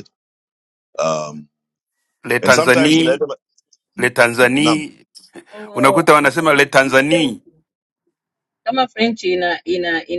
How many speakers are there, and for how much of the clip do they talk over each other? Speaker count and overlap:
3, about 21%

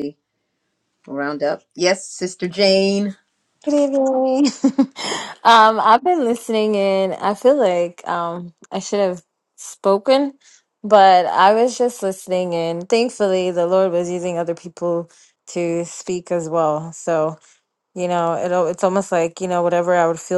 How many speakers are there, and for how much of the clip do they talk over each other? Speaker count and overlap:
2, no overlap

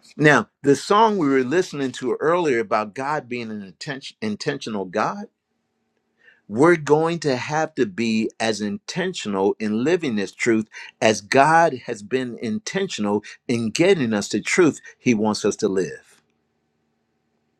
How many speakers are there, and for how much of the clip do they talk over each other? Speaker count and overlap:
1, no overlap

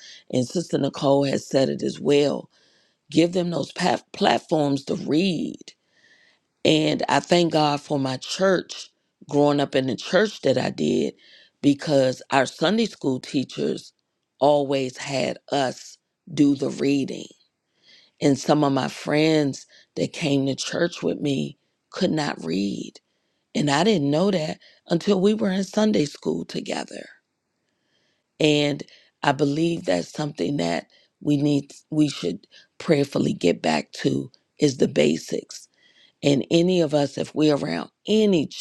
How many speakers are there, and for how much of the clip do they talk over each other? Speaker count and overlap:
1, no overlap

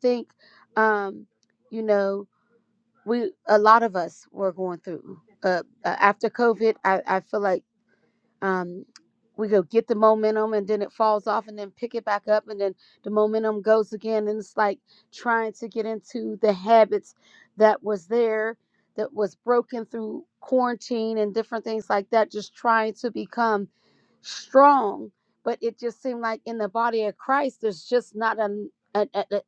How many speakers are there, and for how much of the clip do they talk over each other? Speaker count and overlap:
1, no overlap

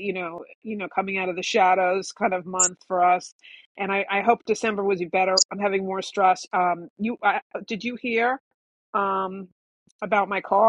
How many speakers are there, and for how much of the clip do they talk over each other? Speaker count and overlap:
1, no overlap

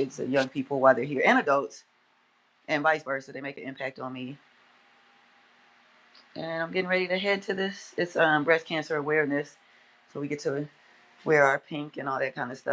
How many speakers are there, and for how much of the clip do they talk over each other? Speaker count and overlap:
1, no overlap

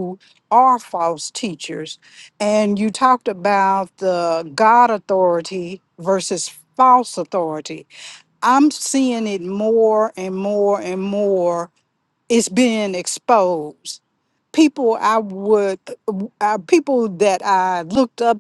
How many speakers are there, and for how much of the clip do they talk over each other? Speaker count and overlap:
1, no overlap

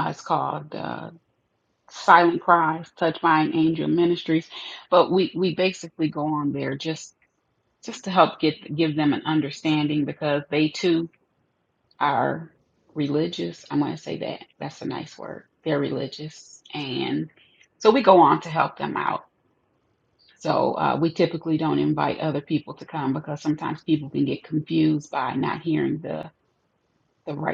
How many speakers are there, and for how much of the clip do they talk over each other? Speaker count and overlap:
1, no overlap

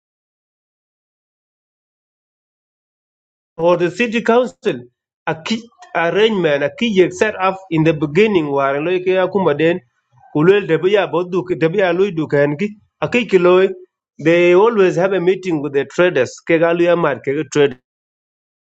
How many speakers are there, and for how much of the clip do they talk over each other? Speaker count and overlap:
1, no overlap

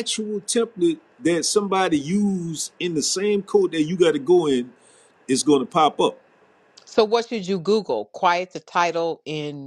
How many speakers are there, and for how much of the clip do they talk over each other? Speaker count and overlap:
2, no overlap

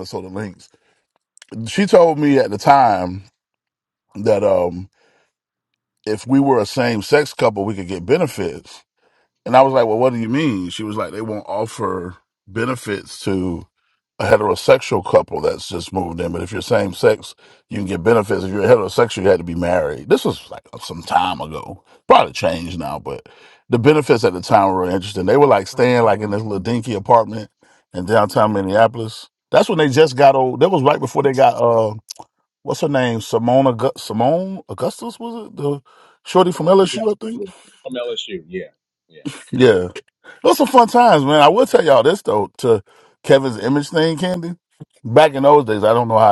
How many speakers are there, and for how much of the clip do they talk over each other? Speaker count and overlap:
2, about 1%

